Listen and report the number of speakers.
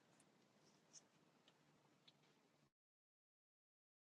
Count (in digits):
0